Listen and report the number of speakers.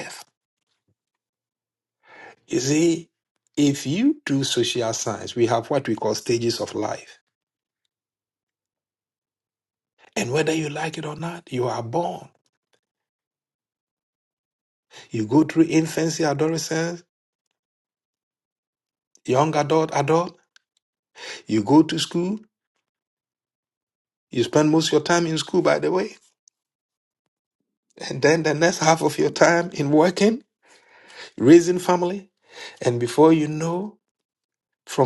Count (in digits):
1